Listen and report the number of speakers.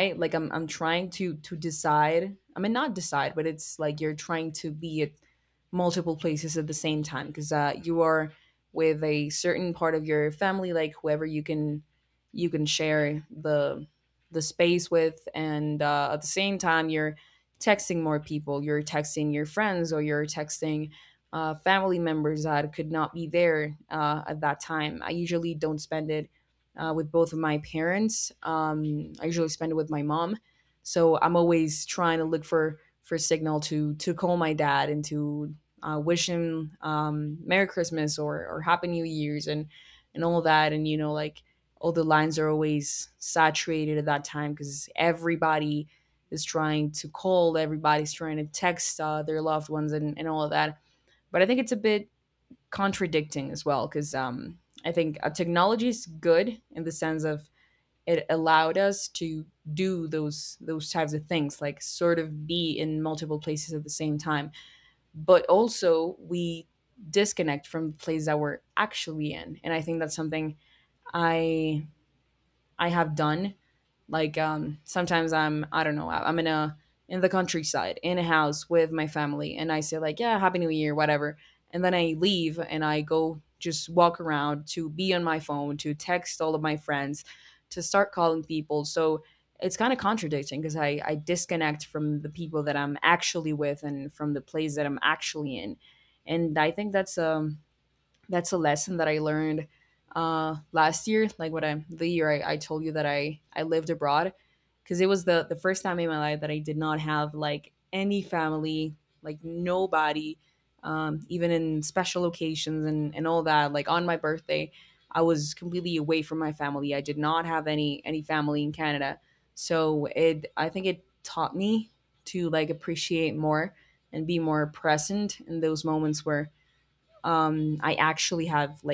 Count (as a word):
one